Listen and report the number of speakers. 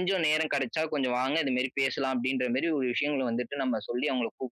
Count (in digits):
1